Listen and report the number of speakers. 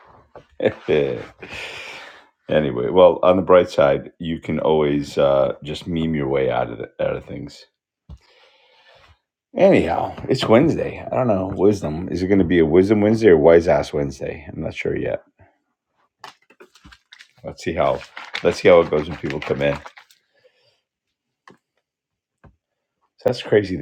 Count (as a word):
one